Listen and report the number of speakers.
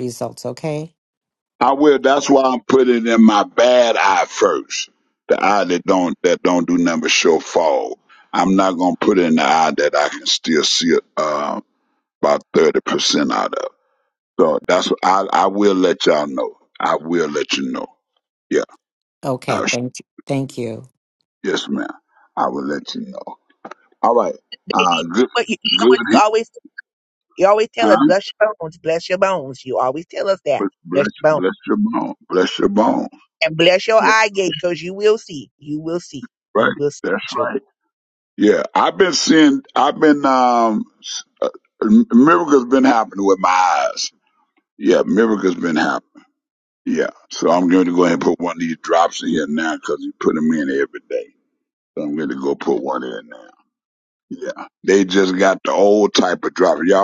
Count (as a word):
three